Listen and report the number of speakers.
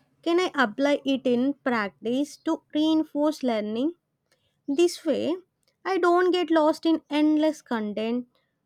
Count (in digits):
1